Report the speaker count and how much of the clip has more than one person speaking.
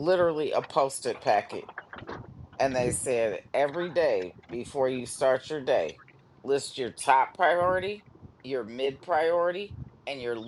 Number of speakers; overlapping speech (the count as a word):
one, no overlap